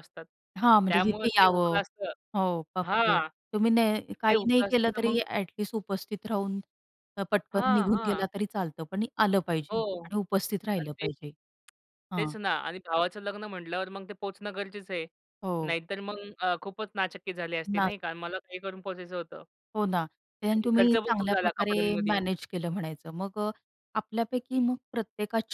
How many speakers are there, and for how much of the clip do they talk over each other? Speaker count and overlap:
two, about 22%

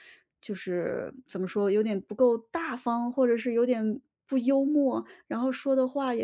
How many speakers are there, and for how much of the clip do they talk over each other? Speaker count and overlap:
one, no overlap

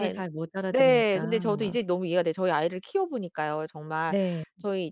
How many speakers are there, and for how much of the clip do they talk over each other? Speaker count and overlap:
two, about 18%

